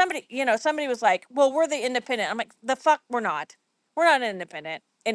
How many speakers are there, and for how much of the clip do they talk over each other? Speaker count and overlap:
1, no overlap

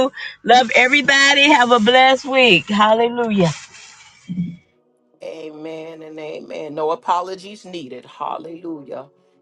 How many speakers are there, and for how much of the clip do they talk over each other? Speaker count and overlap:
2, no overlap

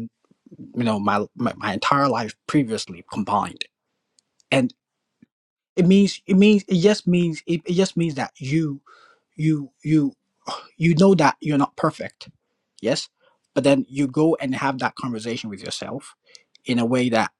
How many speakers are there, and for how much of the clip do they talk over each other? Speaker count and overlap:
1, no overlap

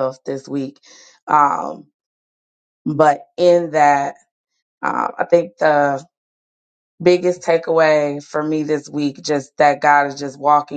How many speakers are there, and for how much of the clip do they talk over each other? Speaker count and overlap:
1, no overlap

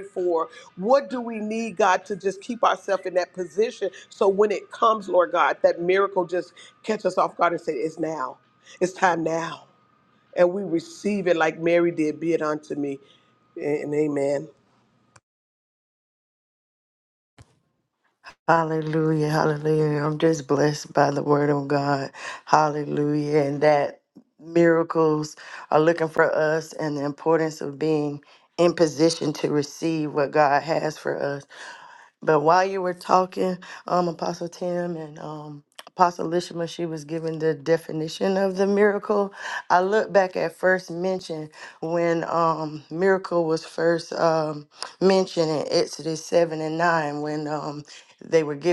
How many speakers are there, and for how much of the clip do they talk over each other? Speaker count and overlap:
2, no overlap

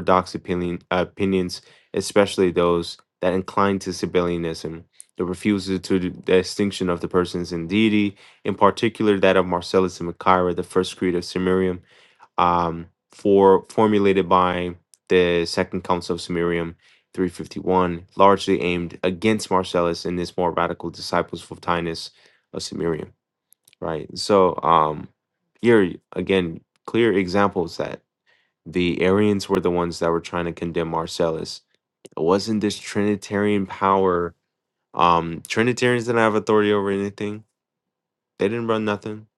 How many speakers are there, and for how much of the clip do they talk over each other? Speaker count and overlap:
1, no overlap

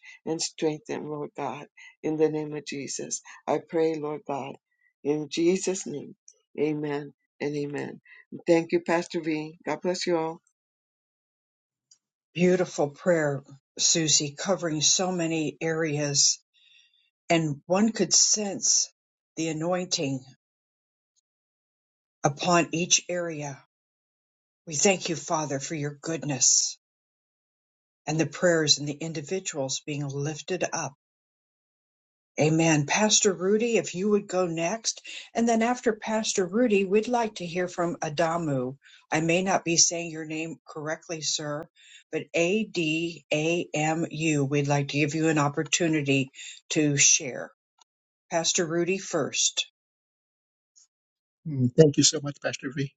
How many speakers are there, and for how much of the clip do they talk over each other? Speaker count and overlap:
3, no overlap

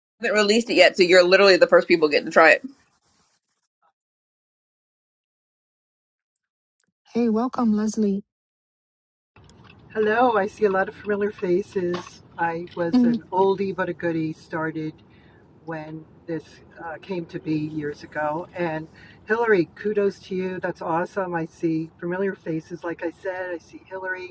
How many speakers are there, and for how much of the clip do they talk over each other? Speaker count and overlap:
3, about 1%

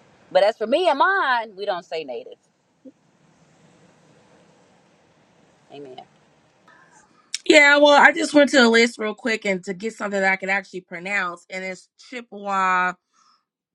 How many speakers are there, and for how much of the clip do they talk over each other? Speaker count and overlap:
2, no overlap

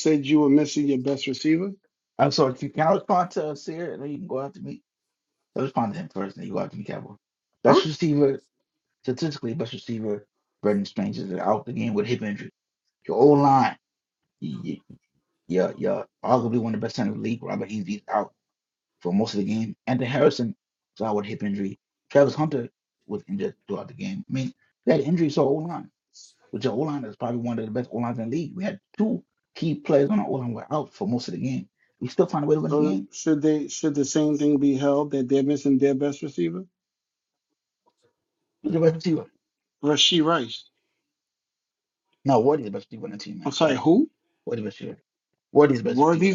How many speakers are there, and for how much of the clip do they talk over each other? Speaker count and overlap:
2, about 3%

